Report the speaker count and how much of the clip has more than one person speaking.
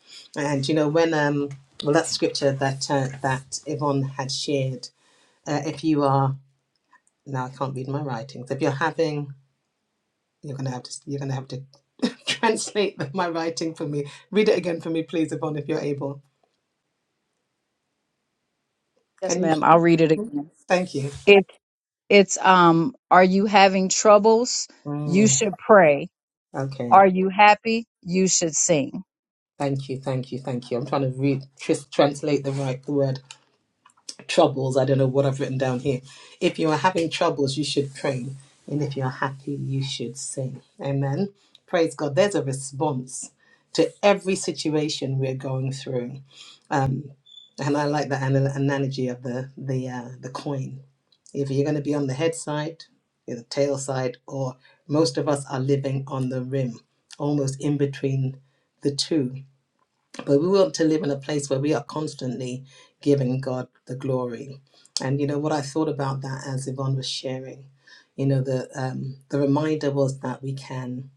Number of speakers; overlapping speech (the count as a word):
two, about 1%